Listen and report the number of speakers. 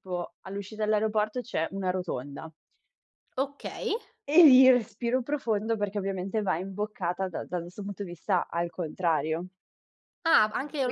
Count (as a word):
two